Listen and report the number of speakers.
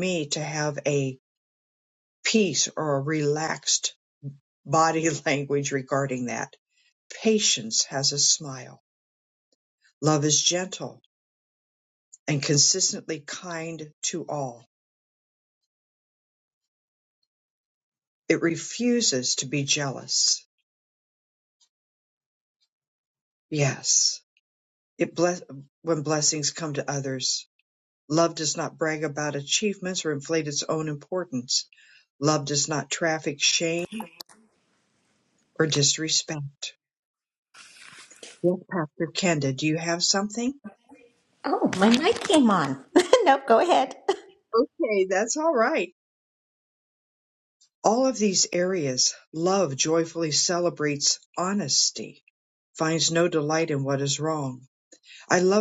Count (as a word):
two